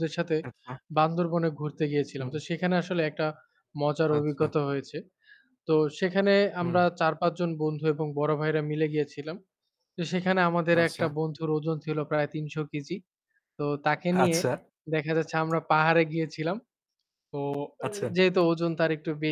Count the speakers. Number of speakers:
2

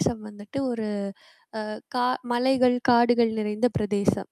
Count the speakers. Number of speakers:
1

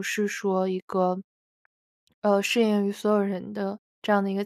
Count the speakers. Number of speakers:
1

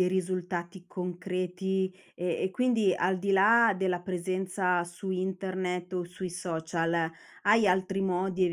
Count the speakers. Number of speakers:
1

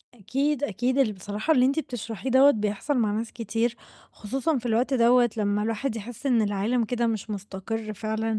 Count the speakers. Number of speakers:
1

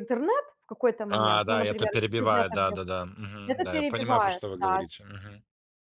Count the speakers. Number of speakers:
2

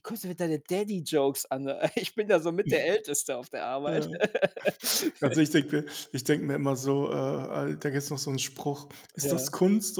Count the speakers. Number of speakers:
2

